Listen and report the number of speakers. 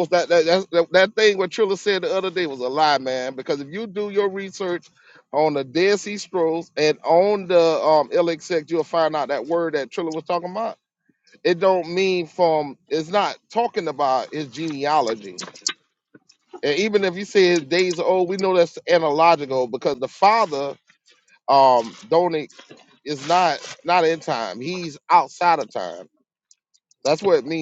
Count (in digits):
1